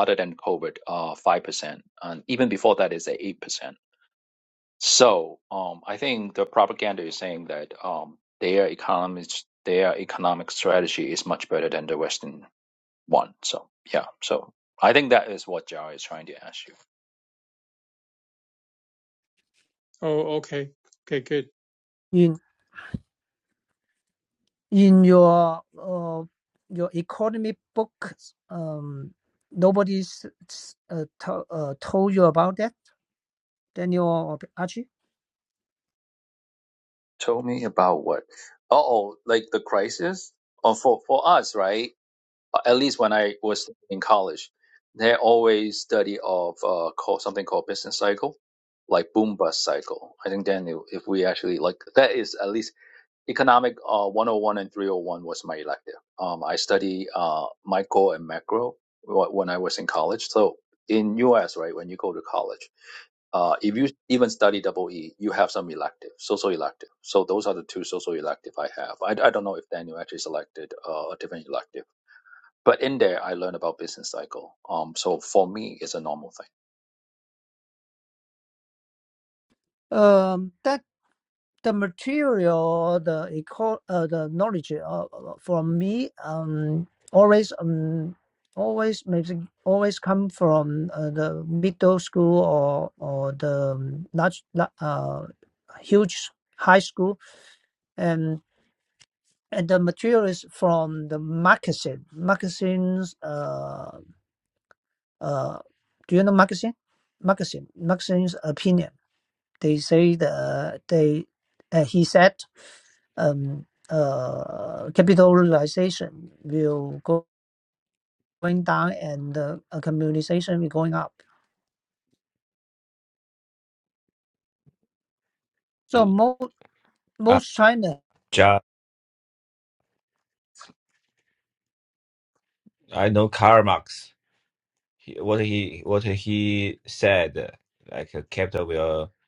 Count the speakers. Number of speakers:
4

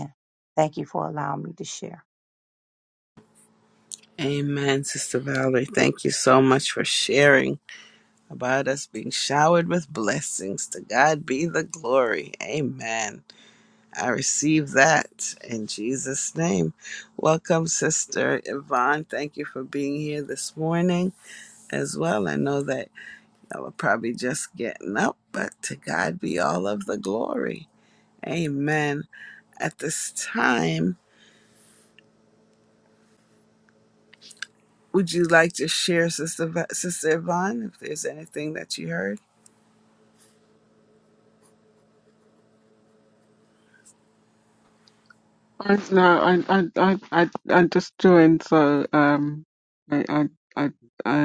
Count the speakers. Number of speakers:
3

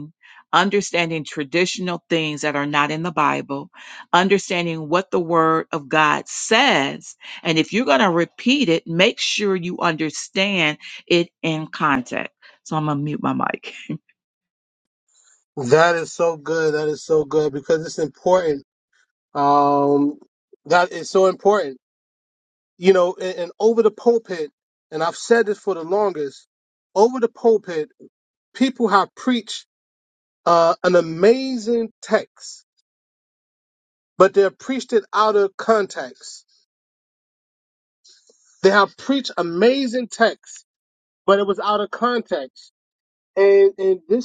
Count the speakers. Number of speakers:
2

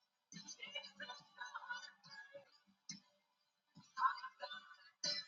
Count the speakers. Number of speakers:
0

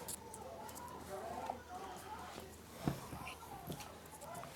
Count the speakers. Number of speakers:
0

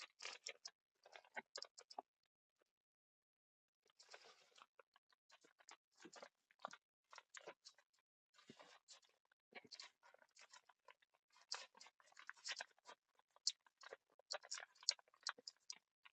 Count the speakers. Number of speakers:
0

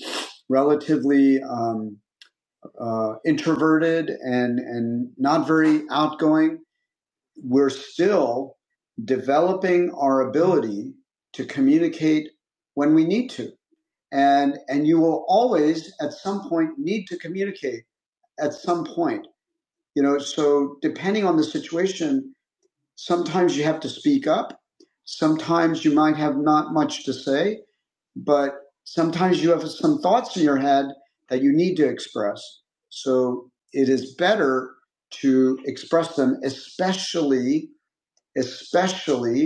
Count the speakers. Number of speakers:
1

